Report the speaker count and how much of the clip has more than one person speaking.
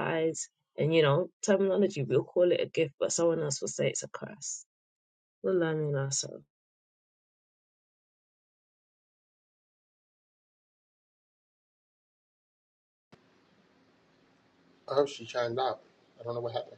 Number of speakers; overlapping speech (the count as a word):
two, no overlap